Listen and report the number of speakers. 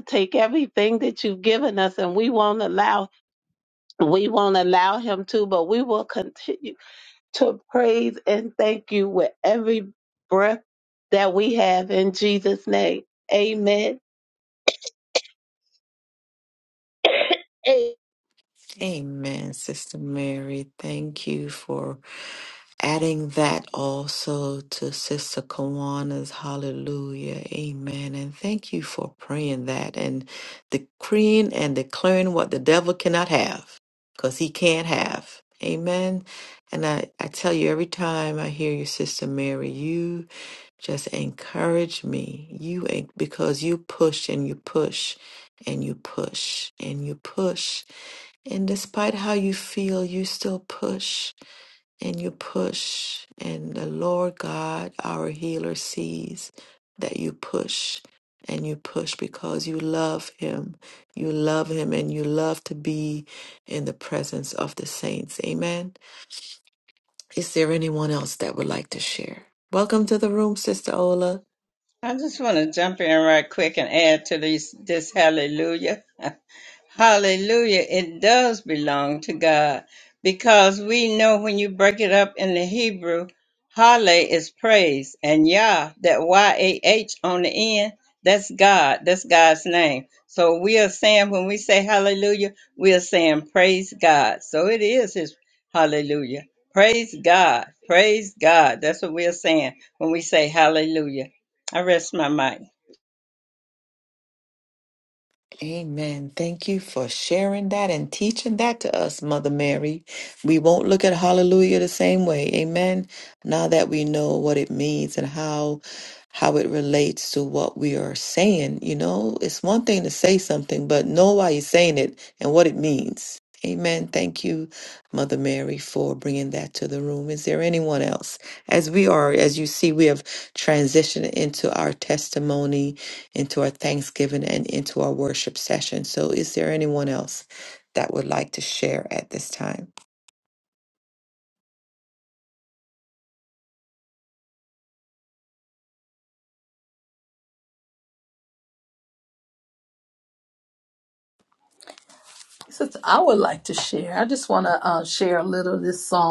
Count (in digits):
4